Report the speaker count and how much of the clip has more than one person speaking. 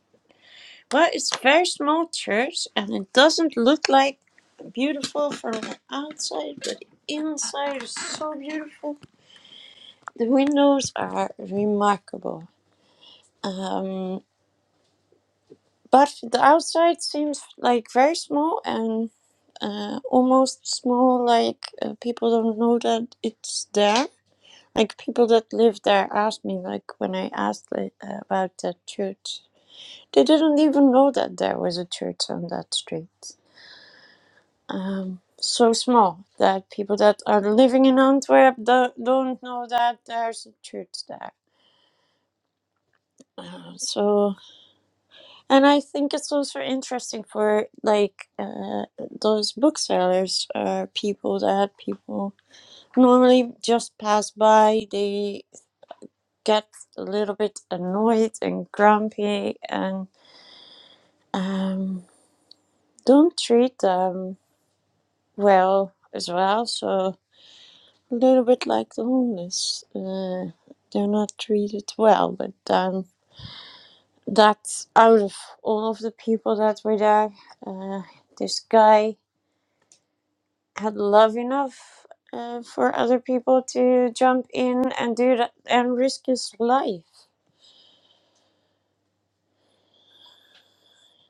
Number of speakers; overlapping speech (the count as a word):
one, no overlap